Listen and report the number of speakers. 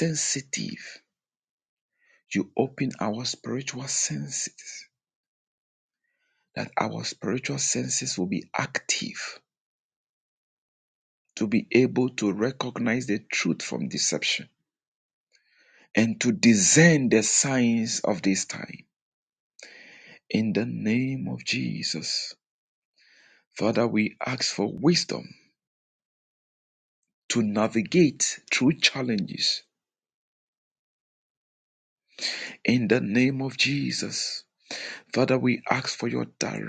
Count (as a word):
one